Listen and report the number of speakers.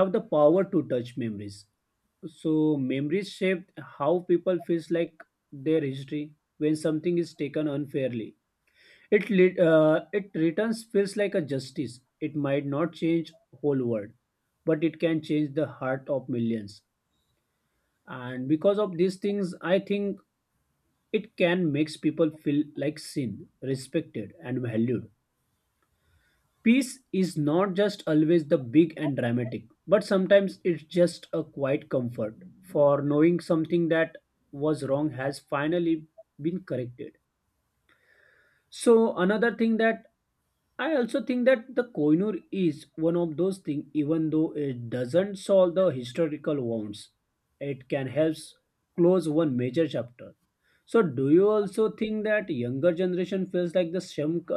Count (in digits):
1